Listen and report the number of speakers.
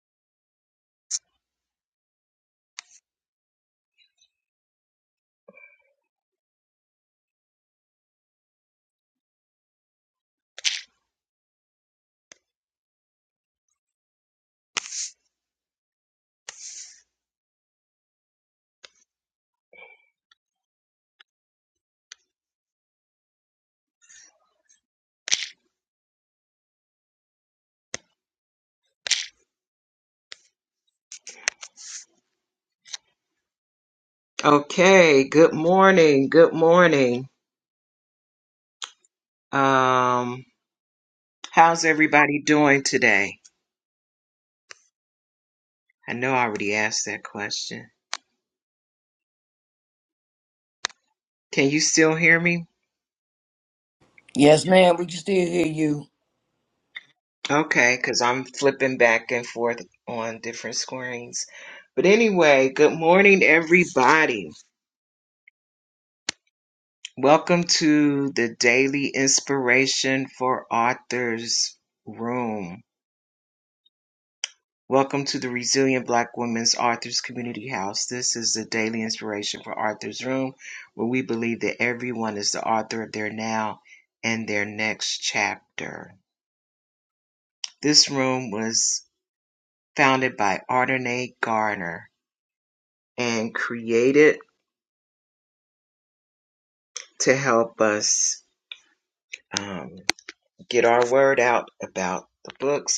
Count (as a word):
two